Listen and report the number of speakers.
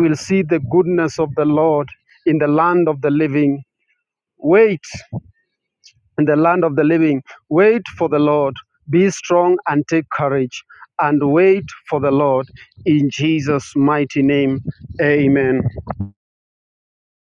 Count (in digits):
1